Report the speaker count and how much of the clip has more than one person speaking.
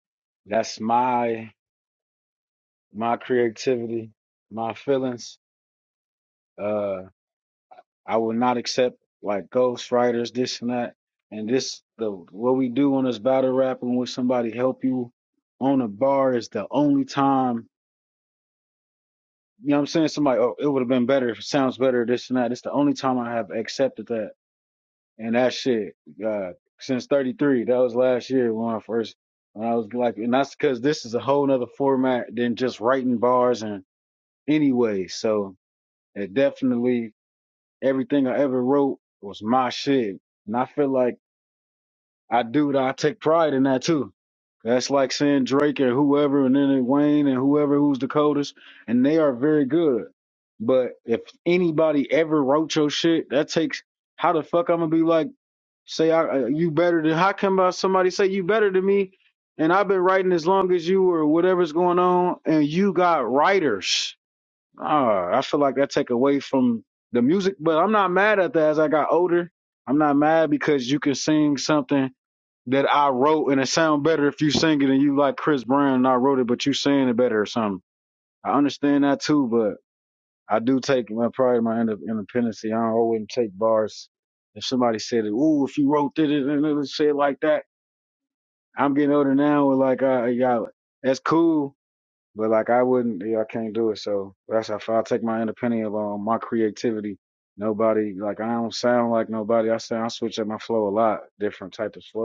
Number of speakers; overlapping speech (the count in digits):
1, no overlap